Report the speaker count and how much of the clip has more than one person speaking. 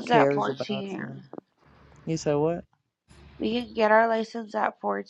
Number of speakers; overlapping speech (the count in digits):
2, about 22%